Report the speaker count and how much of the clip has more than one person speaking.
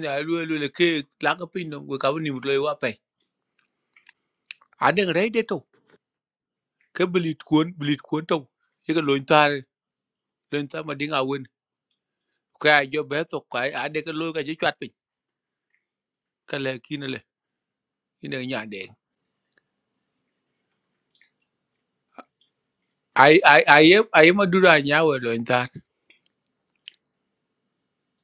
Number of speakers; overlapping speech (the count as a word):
one, no overlap